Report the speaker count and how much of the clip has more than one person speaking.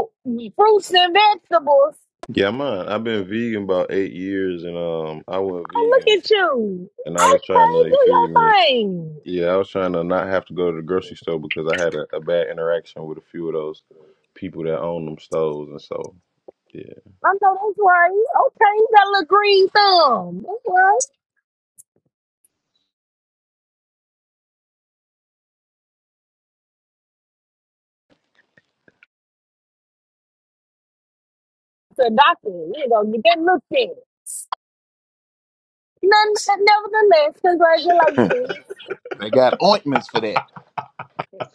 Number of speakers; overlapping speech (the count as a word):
three, about 5%